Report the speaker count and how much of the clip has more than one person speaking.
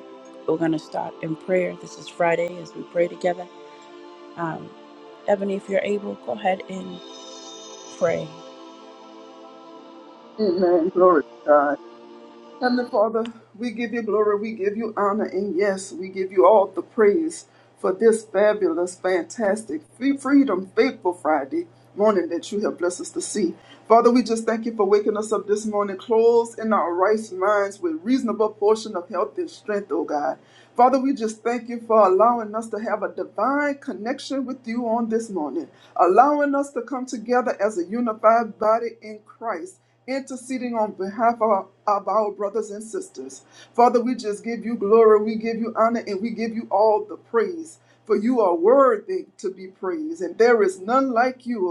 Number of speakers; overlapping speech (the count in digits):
2, no overlap